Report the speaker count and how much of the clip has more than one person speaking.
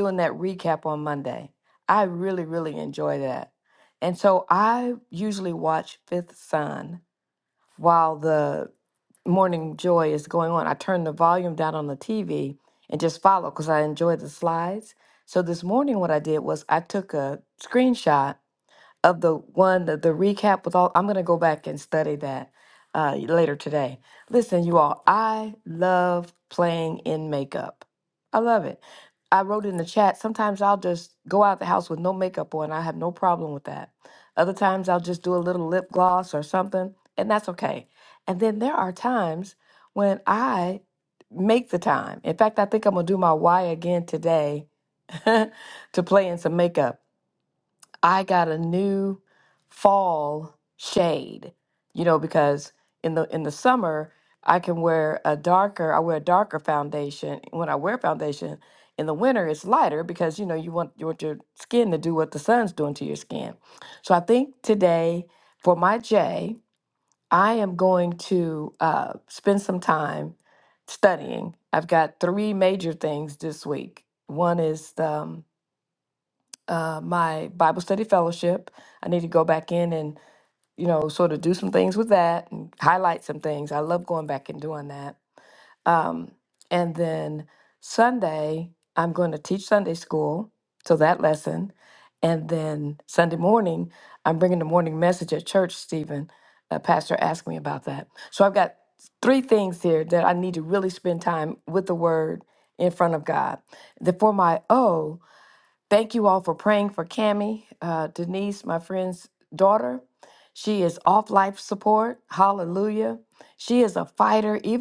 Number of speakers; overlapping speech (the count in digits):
1, no overlap